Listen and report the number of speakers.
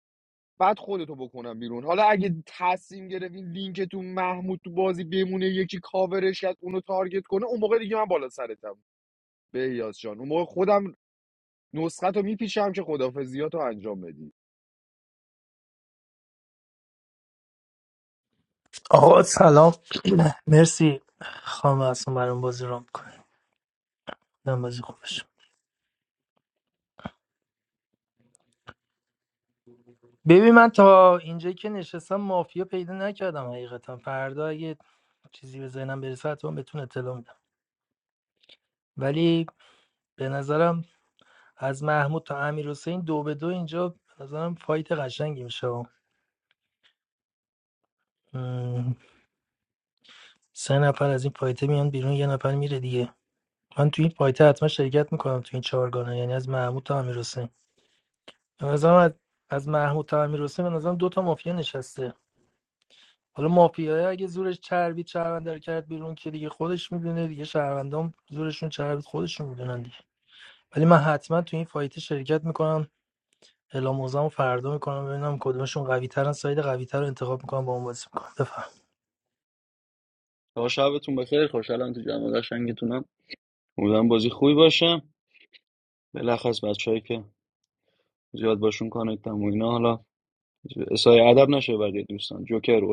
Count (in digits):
3